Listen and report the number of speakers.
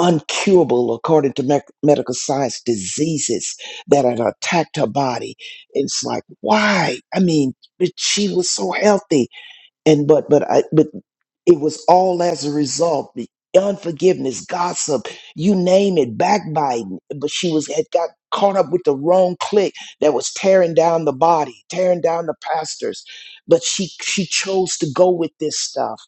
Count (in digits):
1